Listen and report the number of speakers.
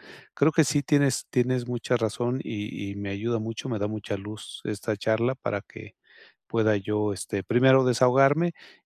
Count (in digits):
1